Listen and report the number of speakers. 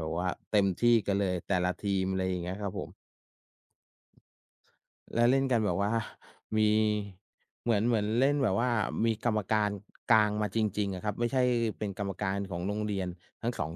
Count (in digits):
1